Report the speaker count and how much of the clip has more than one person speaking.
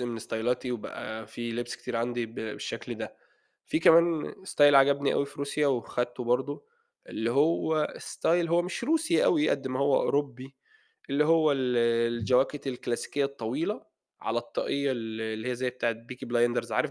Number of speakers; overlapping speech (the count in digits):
1, no overlap